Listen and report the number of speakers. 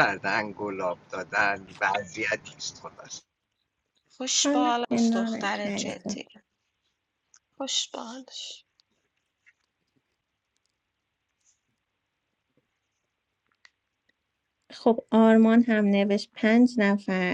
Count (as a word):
three